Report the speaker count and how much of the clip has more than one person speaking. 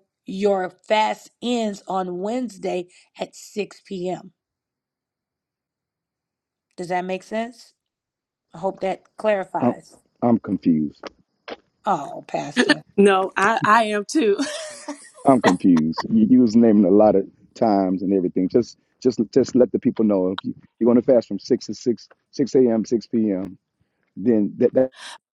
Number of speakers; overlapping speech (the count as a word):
three, under 1%